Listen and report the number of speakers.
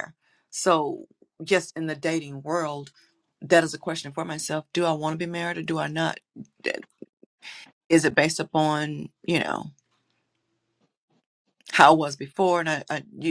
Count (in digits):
1